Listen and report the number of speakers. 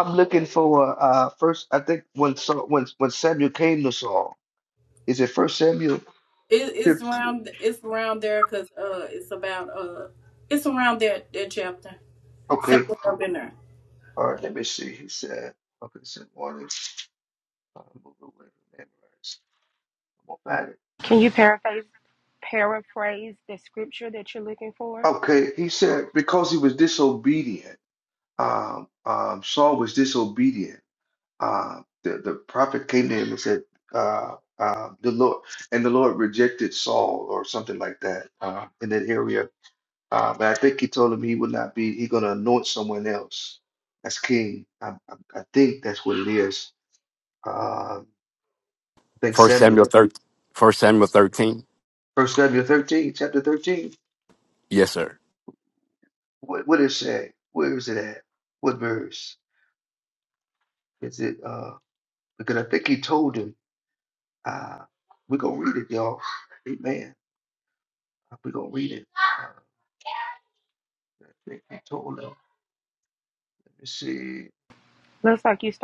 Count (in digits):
4